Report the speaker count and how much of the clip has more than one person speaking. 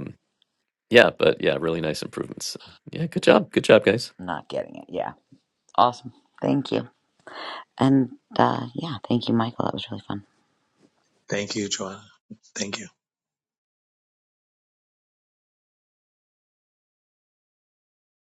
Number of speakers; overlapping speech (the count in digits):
3, no overlap